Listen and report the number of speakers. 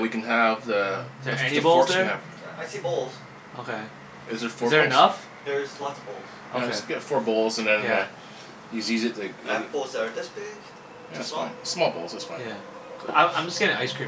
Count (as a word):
three